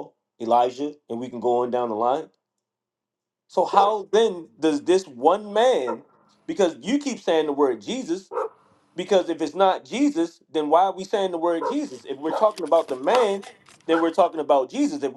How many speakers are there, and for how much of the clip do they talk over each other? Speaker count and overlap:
1, no overlap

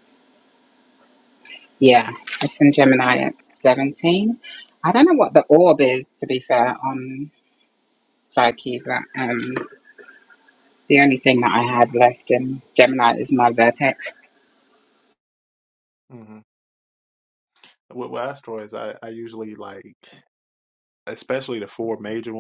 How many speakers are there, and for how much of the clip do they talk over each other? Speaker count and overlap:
2, no overlap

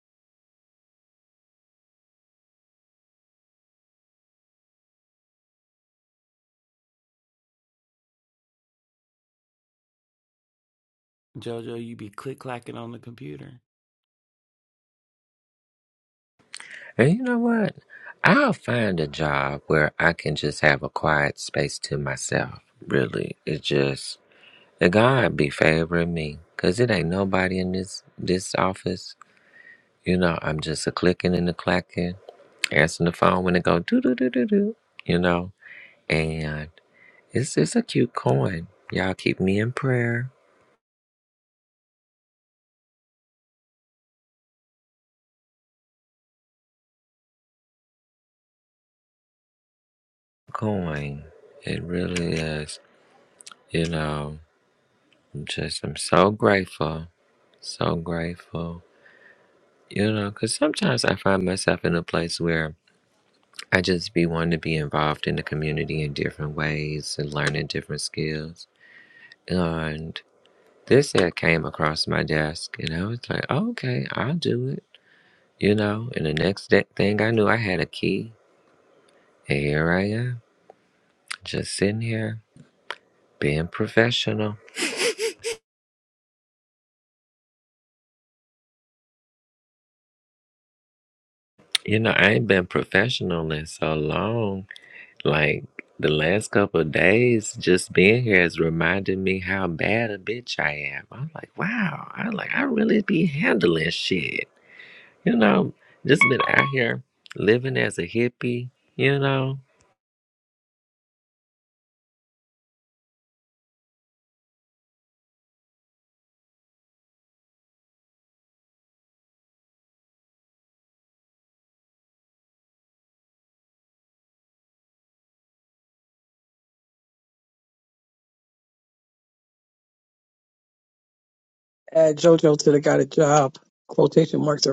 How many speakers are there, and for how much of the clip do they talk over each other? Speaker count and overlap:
3, no overlap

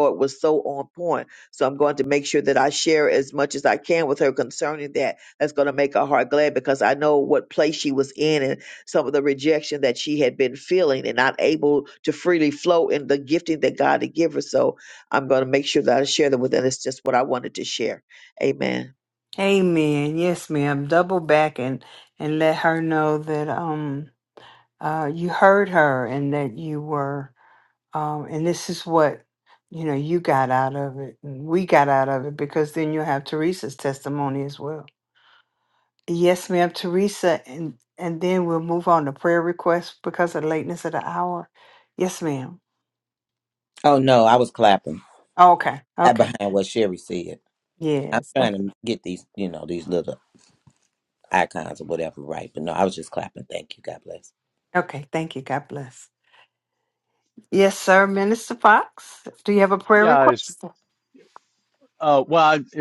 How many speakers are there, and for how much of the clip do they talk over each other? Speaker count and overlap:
4, about 2%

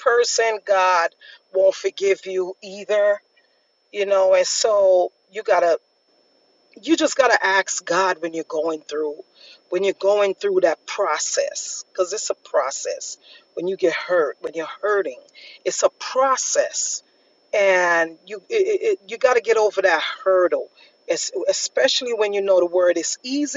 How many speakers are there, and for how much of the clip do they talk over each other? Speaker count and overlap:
1, no overlap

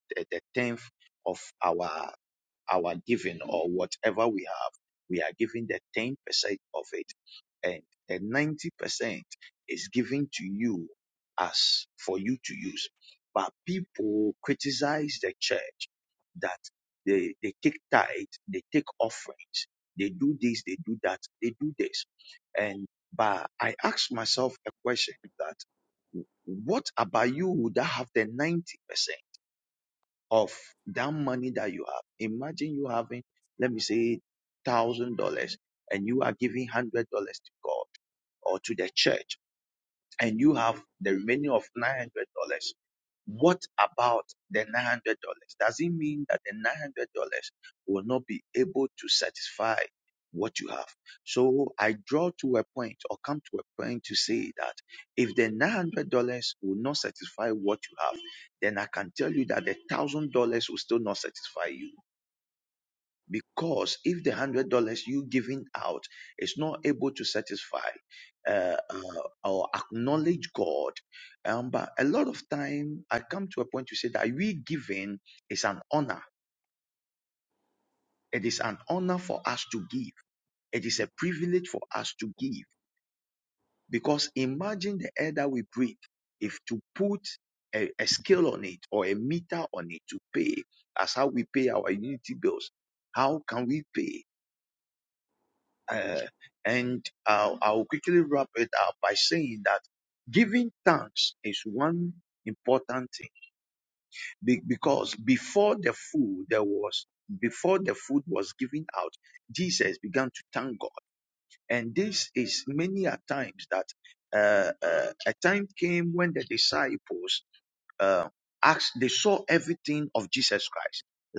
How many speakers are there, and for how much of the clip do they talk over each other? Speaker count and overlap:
1, no overlap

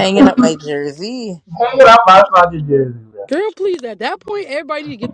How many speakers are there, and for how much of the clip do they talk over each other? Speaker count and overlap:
3, no overlap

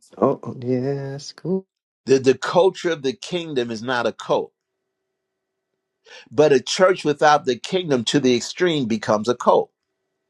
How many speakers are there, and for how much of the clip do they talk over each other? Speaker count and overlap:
2, no overlap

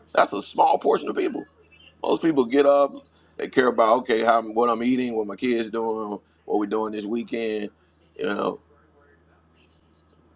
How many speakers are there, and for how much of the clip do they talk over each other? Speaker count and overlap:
1, no overlap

